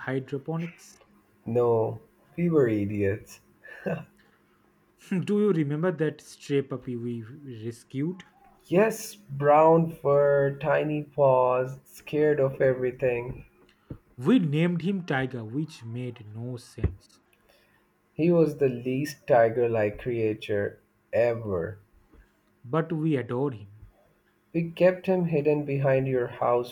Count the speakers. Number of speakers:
two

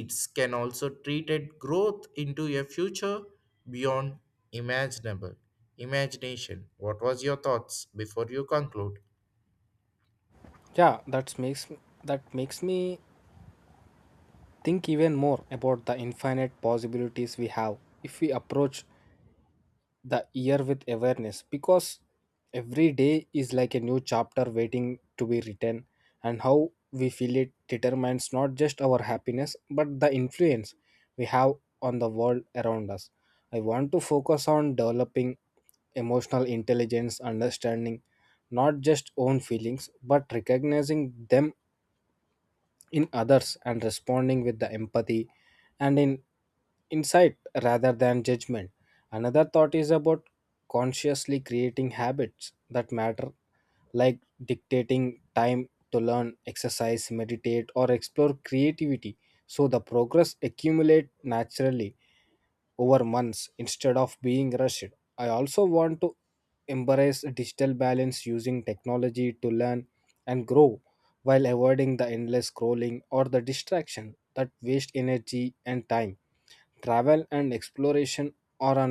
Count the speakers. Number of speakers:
two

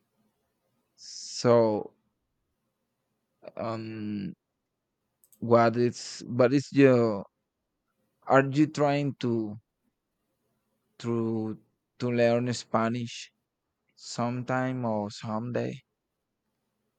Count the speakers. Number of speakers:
one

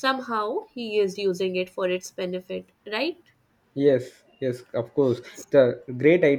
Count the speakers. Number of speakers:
two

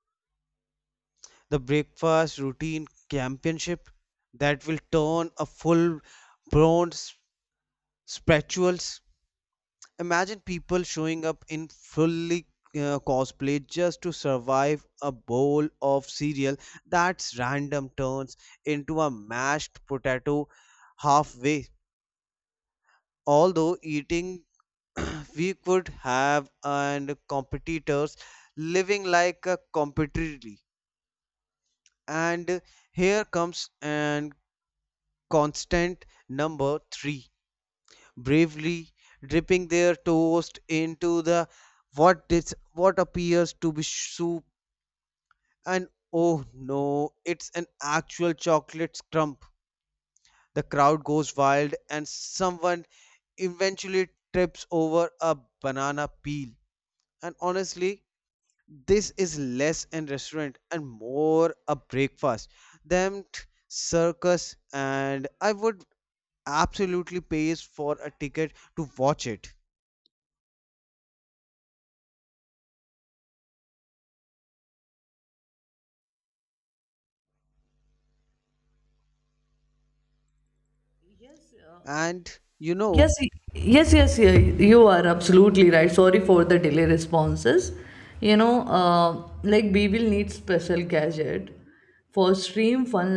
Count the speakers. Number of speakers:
two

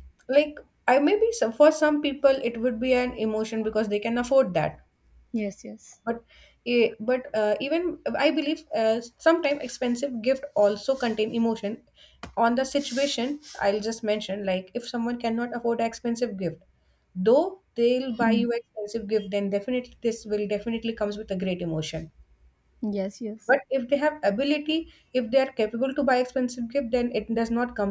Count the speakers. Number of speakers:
two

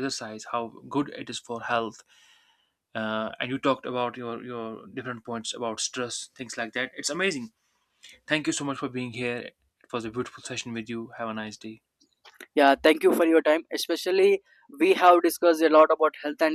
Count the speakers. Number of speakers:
two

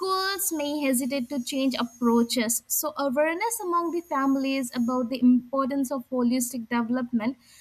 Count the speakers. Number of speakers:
one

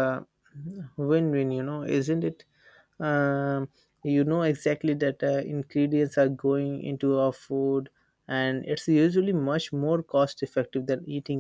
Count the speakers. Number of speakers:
one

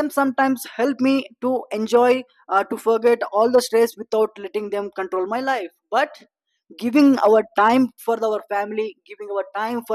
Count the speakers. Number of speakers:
one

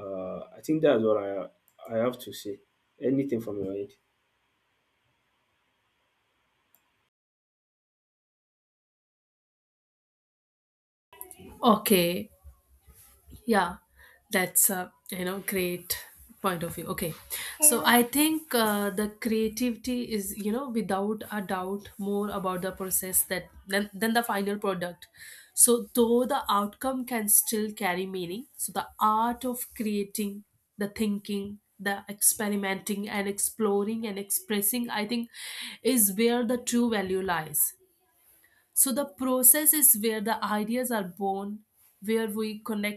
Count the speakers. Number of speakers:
two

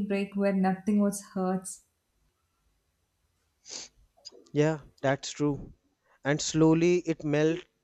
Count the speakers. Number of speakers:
two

